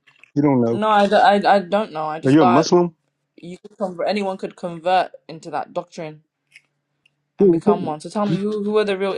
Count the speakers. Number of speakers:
2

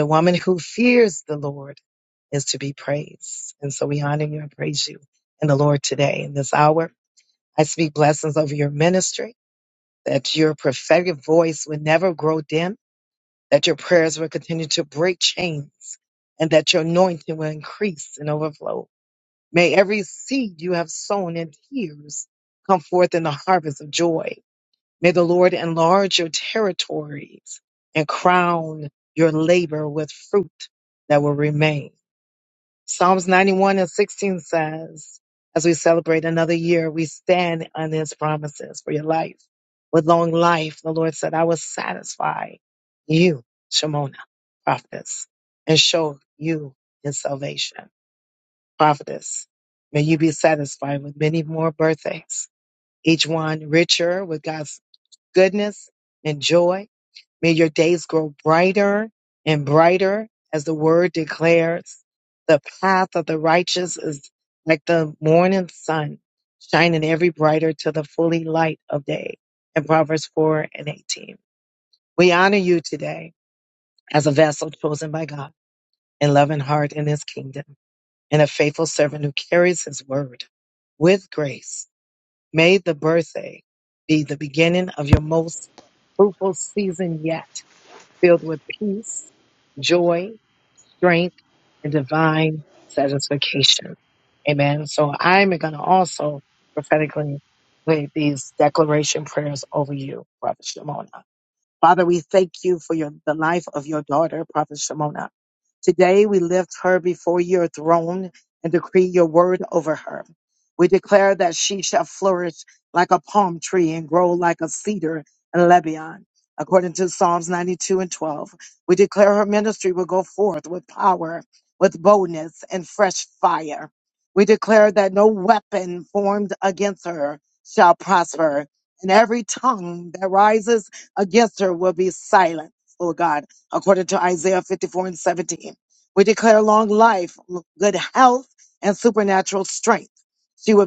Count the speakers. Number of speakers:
1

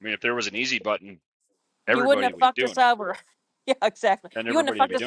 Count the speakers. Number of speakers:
2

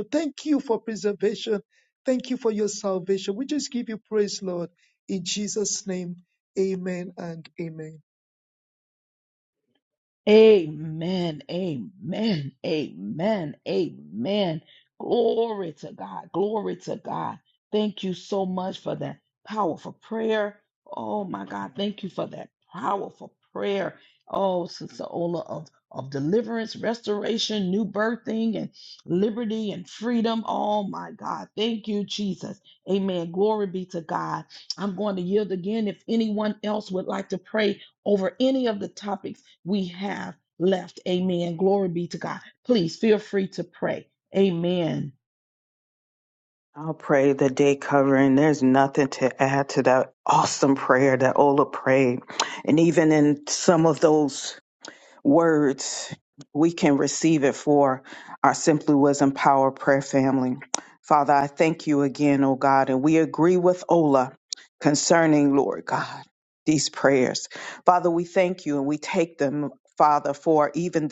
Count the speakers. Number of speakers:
3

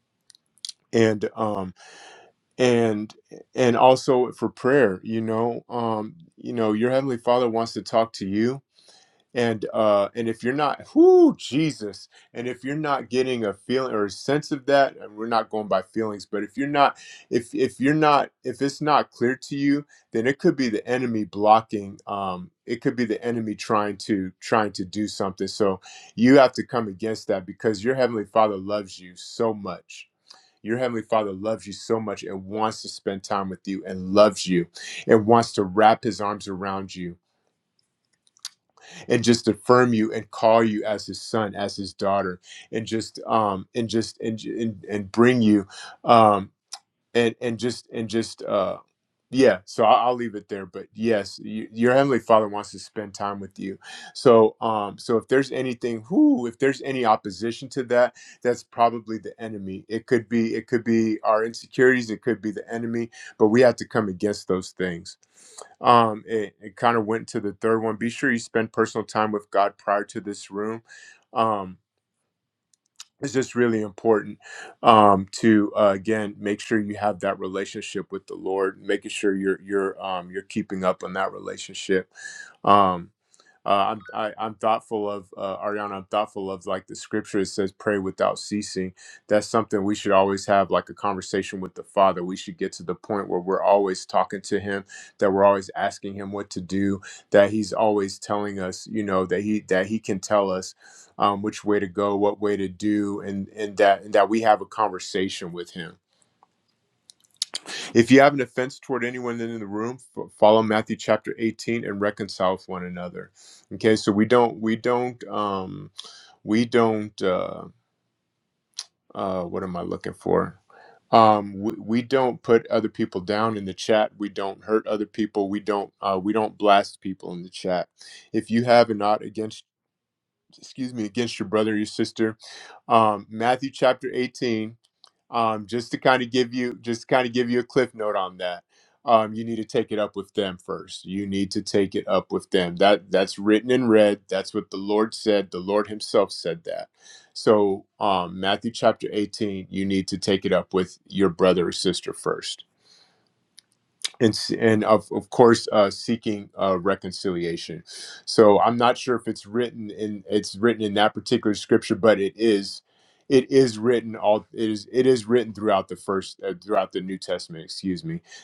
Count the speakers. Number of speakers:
1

